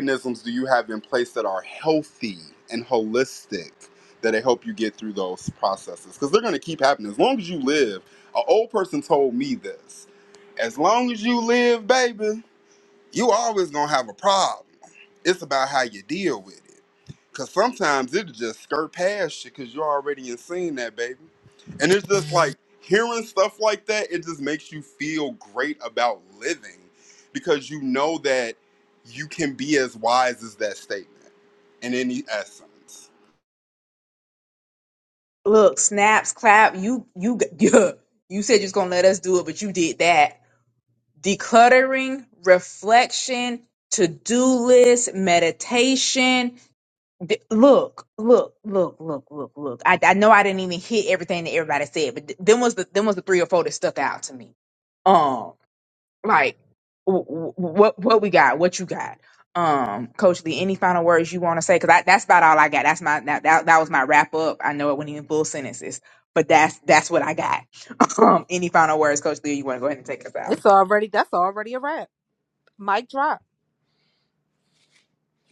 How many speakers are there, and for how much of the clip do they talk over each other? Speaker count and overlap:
3, under 1%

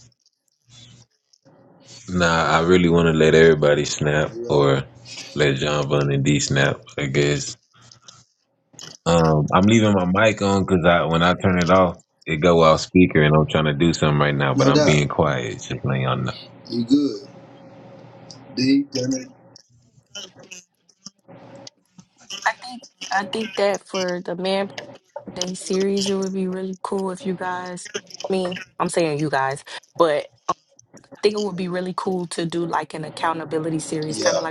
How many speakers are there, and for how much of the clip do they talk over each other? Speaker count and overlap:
3, about 3%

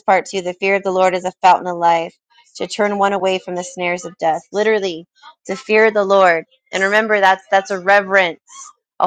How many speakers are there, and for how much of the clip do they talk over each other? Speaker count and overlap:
1, no overlap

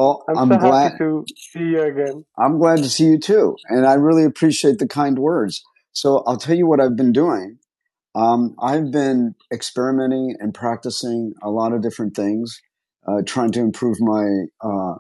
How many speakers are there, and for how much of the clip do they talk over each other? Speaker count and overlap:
2, about 5%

